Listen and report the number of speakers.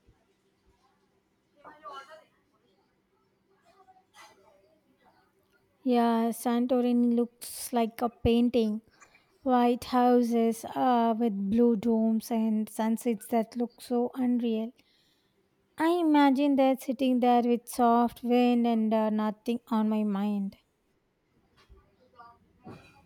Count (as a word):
one